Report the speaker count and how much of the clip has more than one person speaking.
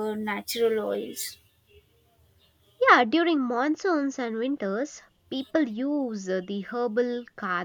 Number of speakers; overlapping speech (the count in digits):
2, no overlap